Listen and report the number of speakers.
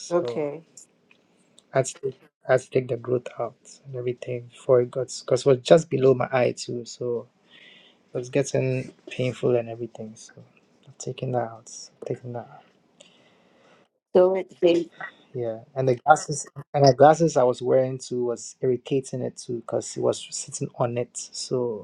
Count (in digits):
2